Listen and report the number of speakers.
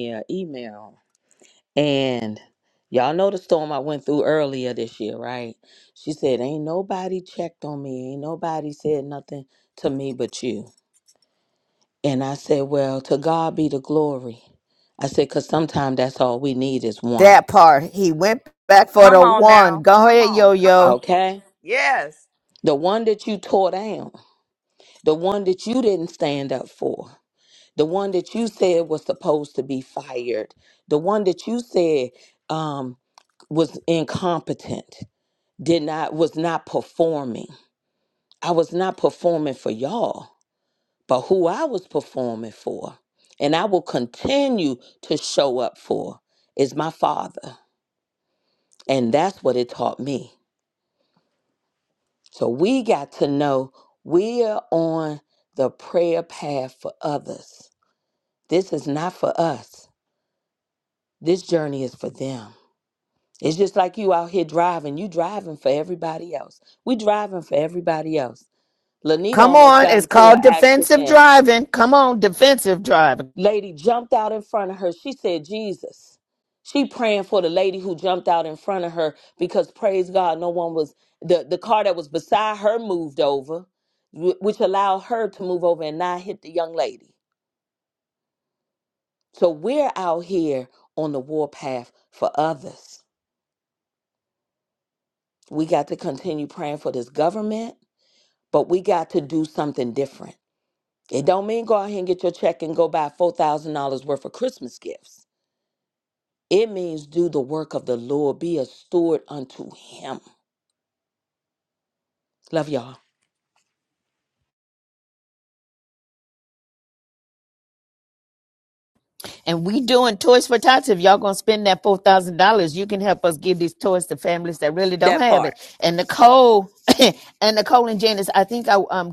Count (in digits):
3